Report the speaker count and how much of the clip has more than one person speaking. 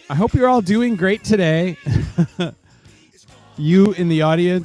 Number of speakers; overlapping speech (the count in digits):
1, no overlap